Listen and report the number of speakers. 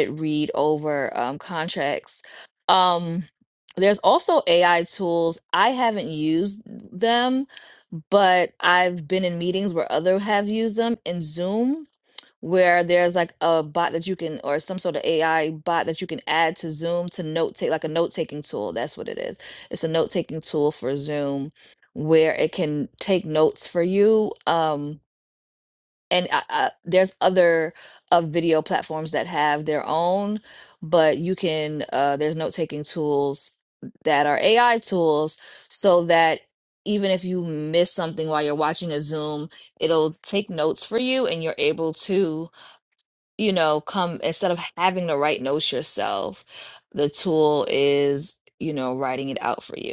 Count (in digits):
1